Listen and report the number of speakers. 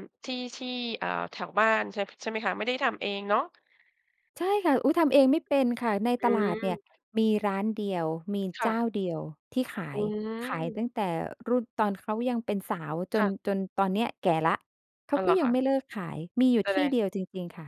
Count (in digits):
2